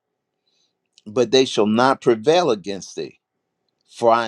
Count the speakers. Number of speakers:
one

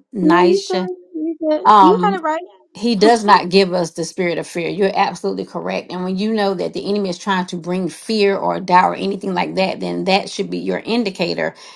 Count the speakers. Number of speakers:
two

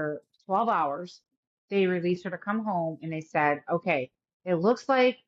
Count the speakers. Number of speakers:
one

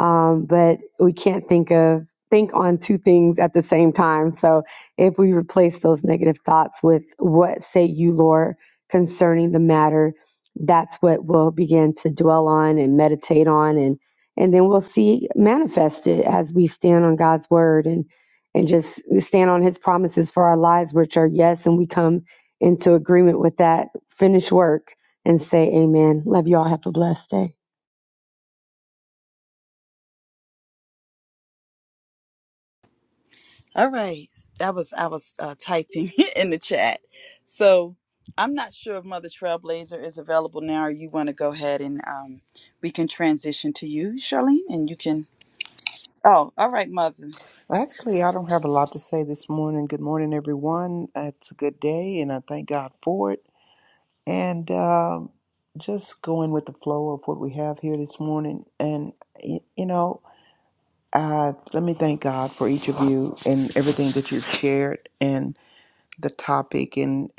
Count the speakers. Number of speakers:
three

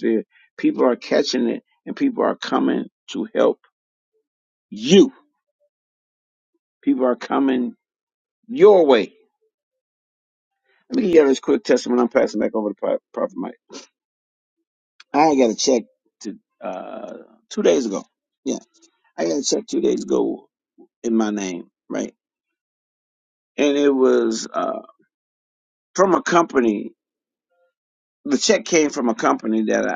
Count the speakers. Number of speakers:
one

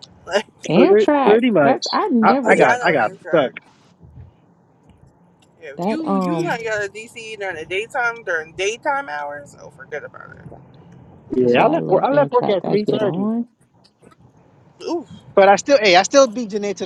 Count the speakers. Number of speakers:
three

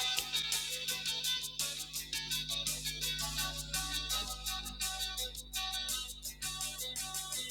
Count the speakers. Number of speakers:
zero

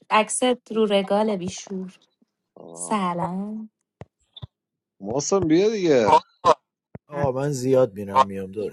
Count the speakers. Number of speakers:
three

